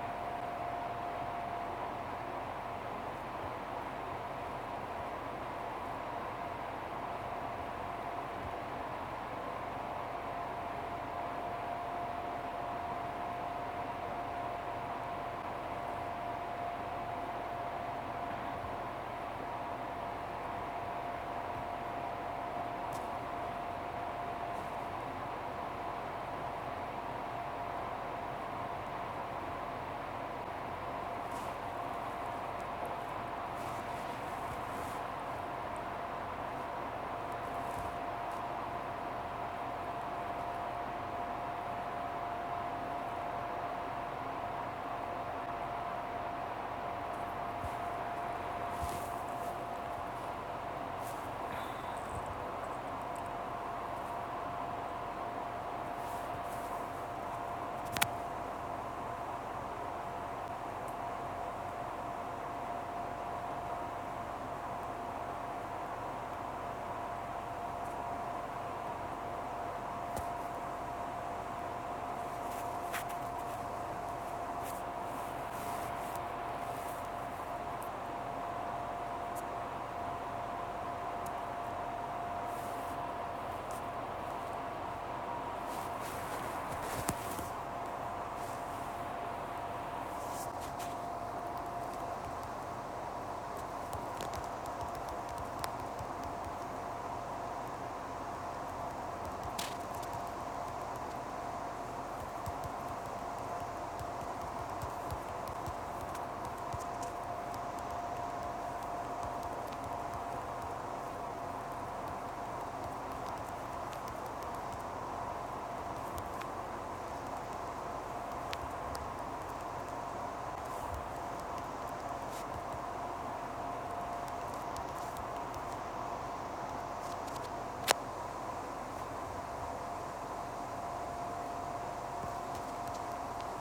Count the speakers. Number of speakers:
0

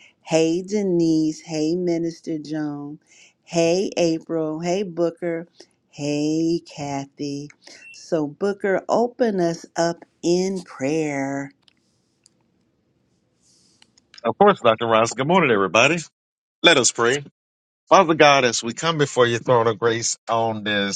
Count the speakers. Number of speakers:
2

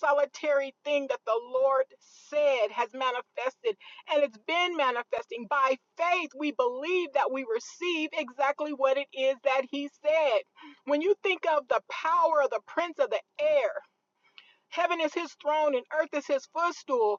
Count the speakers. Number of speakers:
1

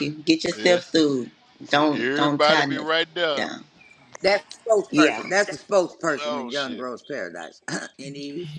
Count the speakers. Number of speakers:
3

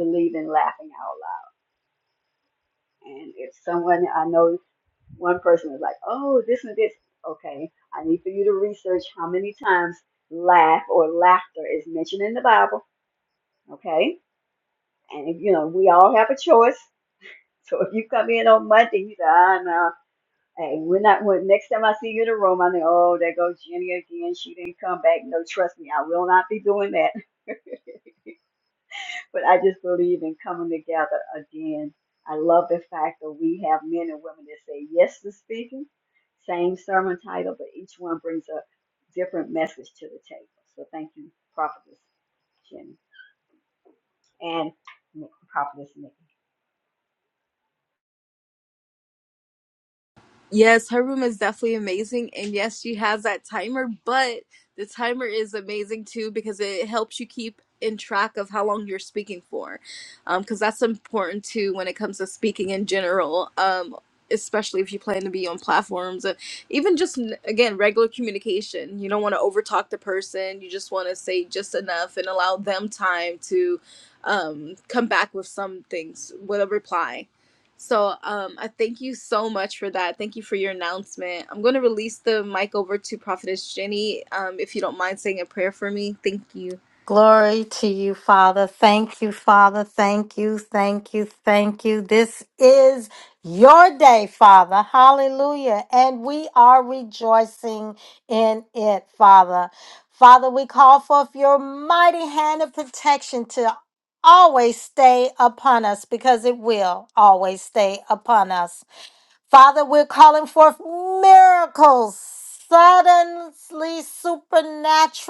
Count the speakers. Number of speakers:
3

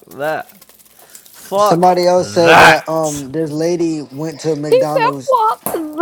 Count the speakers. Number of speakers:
3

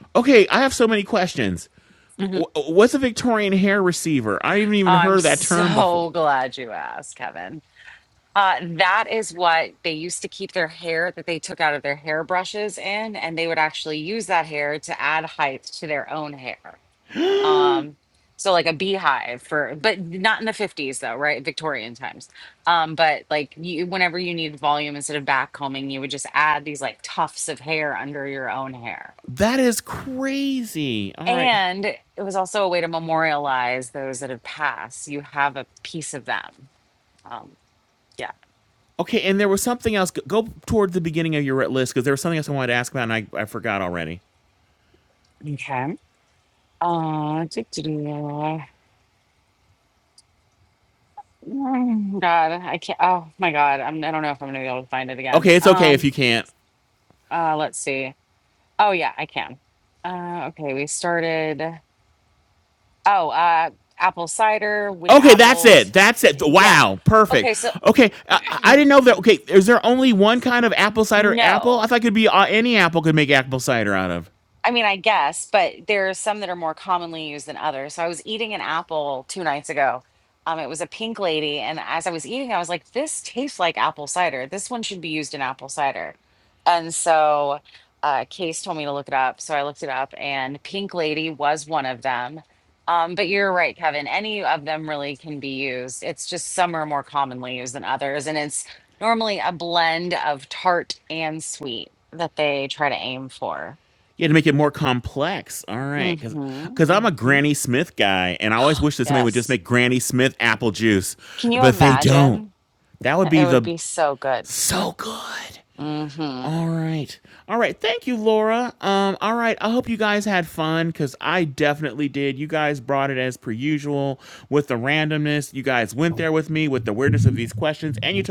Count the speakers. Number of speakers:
2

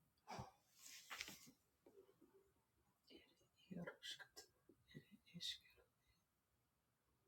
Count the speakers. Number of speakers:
0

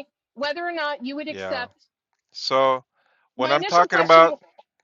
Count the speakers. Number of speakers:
2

